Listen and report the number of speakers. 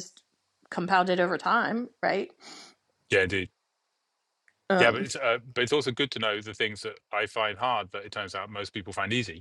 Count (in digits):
2